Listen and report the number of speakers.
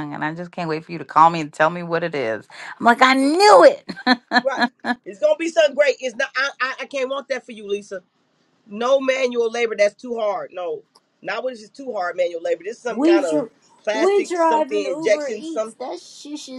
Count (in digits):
3